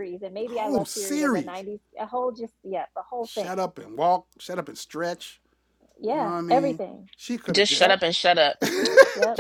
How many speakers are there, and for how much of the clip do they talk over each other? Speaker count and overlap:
3, about 26%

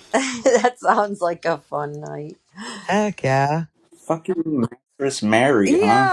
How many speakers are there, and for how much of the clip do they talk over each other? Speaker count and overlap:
3, about 7%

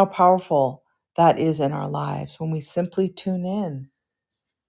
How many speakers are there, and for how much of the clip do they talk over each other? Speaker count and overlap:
1, no overlap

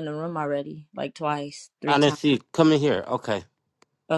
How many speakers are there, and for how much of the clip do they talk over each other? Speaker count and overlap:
2, about 7%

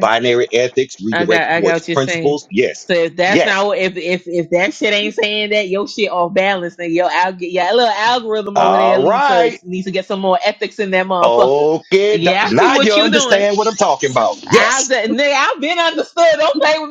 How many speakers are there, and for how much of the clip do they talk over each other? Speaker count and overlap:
2, about 29%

